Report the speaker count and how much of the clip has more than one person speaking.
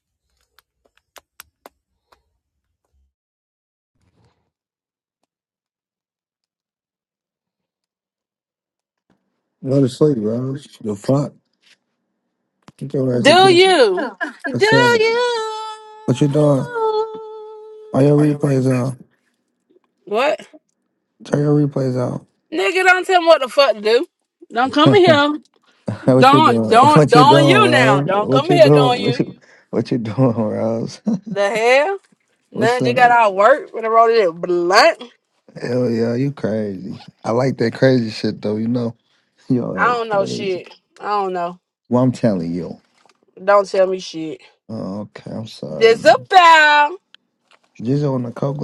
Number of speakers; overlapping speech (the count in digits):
2, about 13%